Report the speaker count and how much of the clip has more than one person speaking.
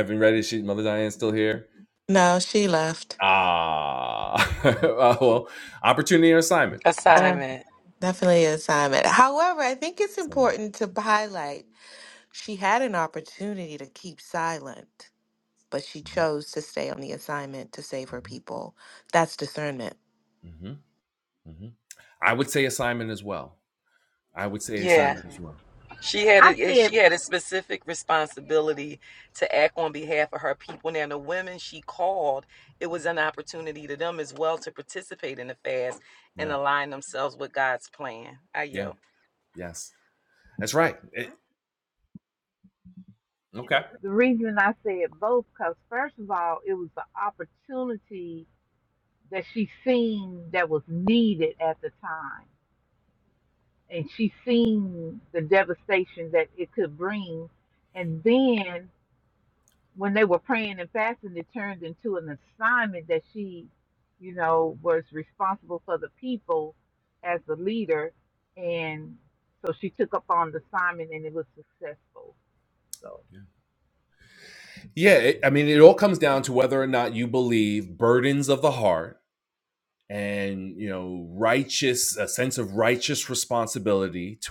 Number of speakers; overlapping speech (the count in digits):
4, about 2%